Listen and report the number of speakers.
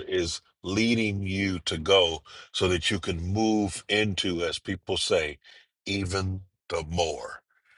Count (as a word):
one